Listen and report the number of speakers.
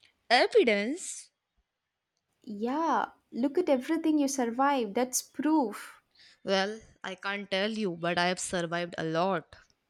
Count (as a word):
two